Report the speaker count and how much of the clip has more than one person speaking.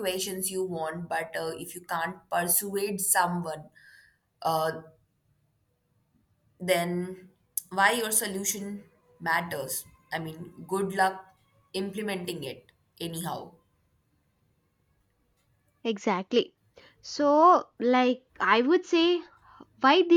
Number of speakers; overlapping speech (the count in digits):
2, no overlap